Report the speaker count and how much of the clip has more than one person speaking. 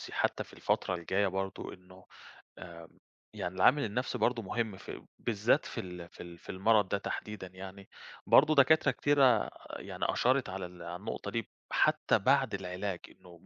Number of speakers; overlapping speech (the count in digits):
1, no overlap